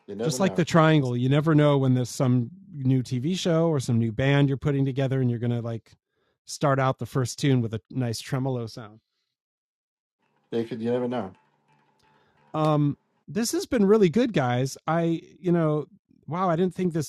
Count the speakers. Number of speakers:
two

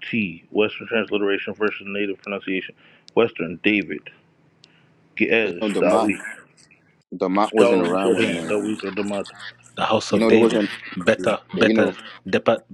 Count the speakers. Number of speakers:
three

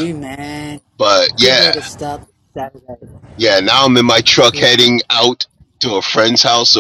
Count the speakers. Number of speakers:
two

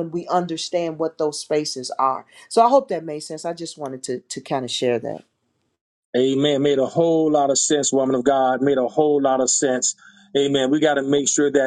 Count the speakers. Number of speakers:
two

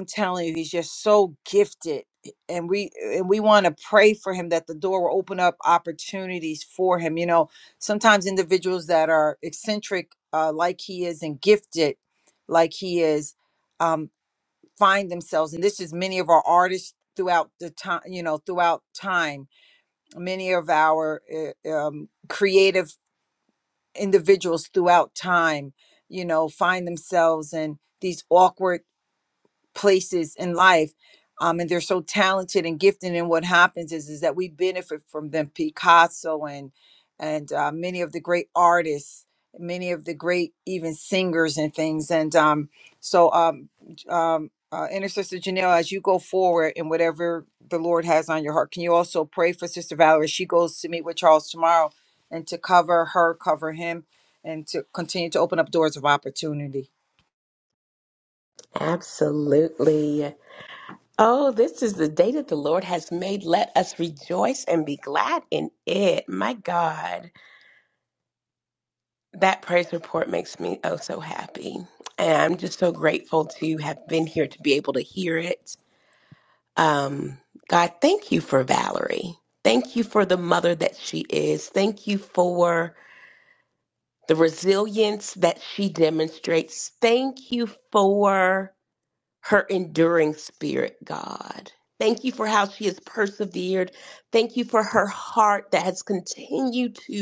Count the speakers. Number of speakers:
two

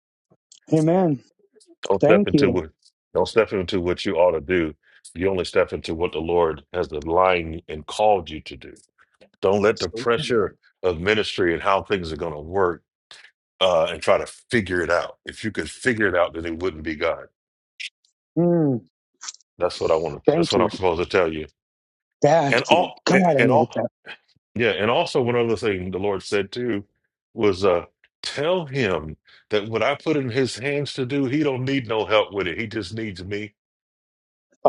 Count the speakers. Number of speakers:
two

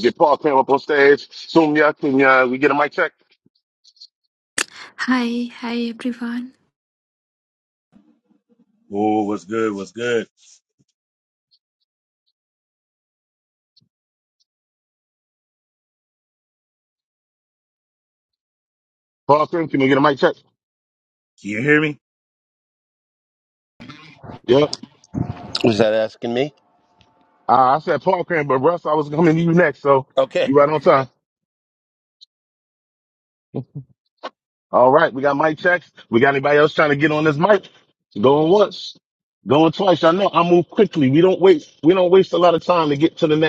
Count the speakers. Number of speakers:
four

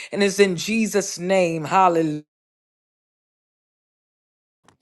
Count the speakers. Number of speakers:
one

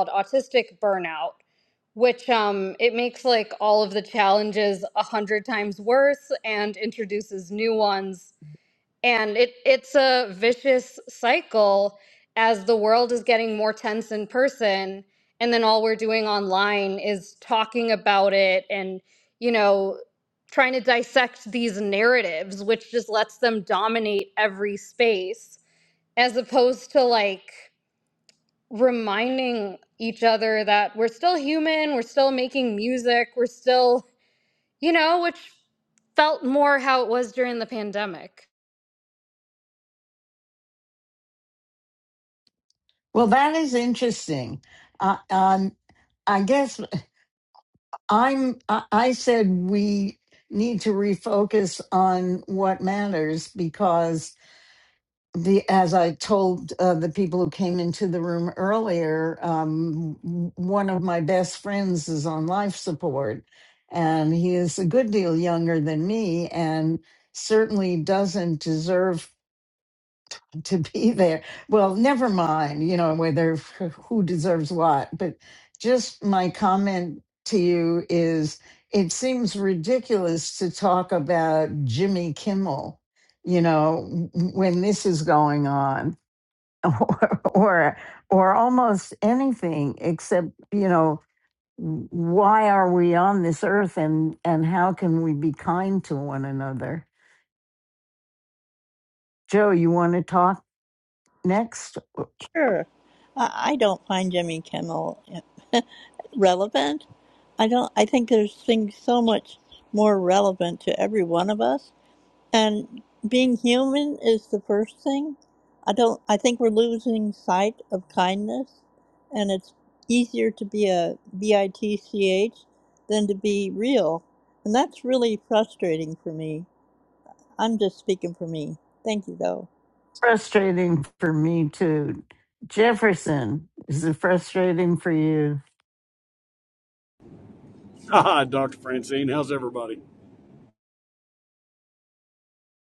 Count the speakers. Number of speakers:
four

